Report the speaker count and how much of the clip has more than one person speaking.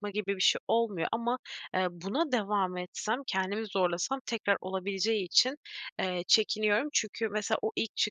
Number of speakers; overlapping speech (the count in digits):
1, no overlap